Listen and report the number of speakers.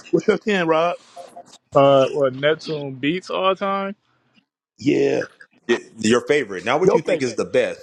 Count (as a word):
three